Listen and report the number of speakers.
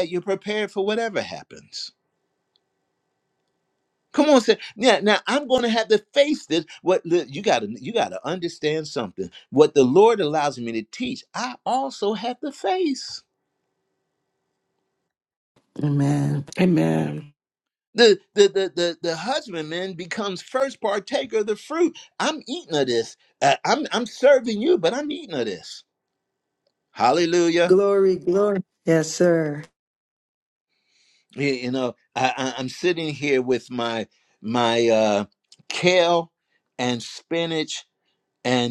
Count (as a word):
three